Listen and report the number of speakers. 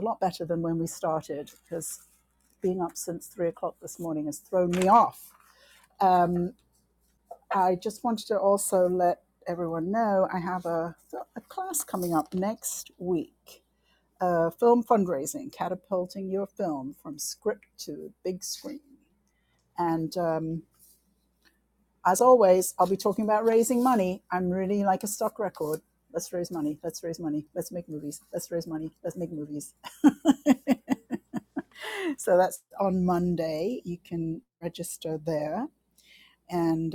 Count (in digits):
1